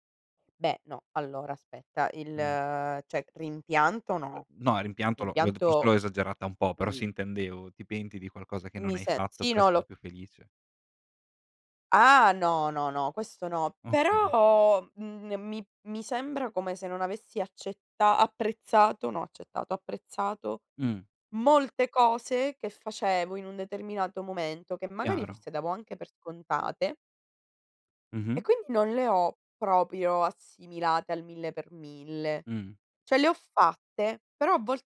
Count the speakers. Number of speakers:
2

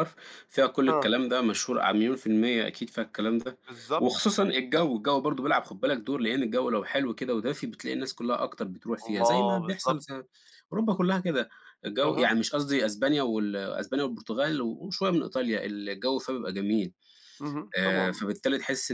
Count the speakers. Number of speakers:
2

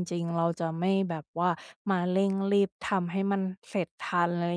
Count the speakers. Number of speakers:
1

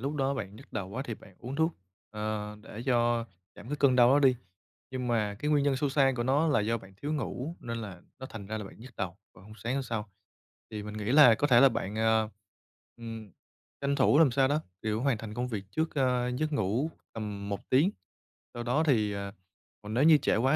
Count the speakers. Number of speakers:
1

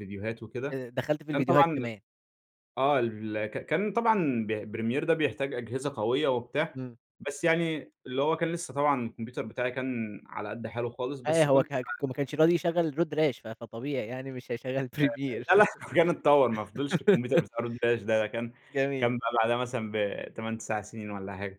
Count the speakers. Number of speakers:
2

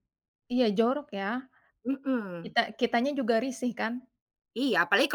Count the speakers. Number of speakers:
2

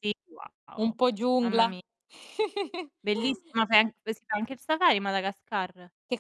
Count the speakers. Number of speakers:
2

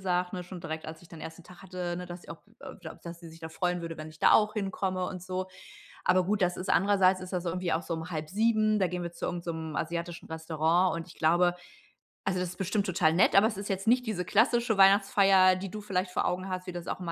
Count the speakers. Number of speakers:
1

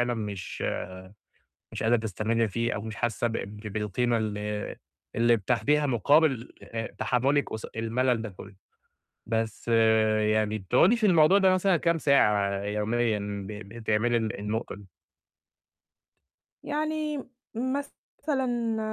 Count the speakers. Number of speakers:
2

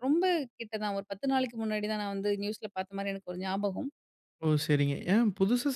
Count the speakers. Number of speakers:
2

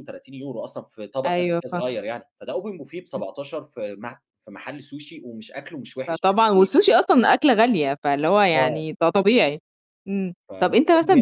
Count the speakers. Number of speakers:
2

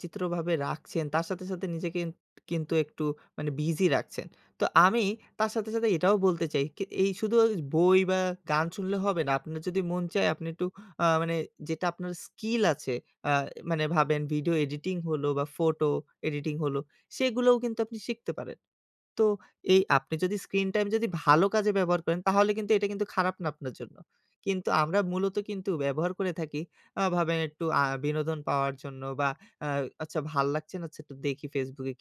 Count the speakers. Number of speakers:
1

